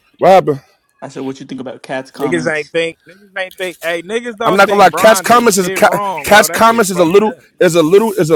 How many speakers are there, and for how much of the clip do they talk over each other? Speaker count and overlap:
three, about 37%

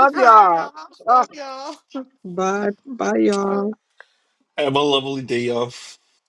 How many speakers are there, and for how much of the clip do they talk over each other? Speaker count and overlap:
three, about 13%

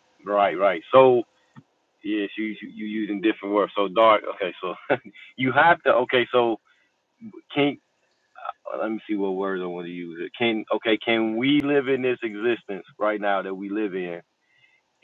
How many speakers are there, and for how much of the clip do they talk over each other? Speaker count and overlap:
one, no overlap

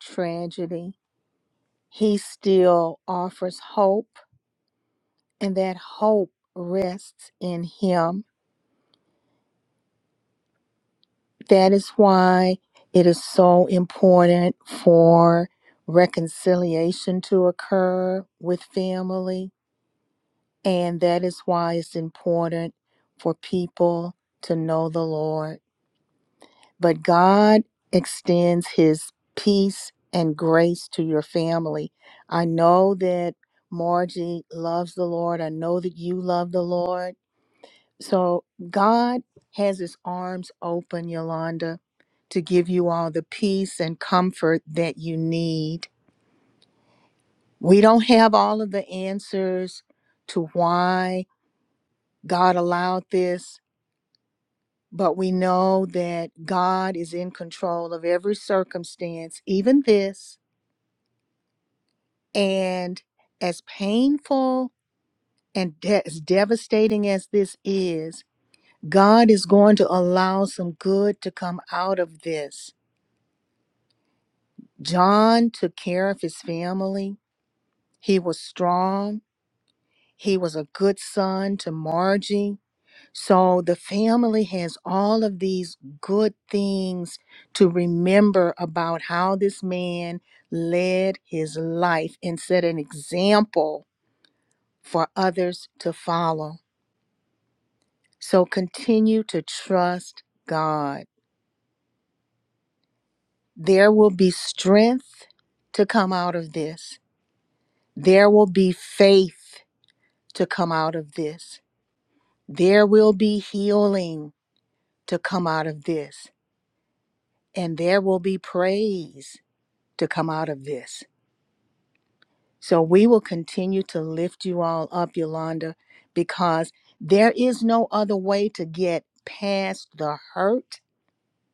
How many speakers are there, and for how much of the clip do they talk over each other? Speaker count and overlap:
one, no overlap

